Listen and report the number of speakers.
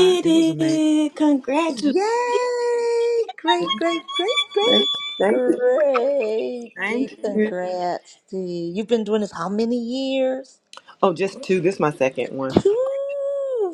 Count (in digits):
3